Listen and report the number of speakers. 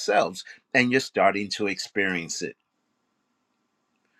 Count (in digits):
1